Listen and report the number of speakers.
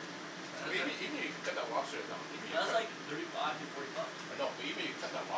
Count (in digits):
2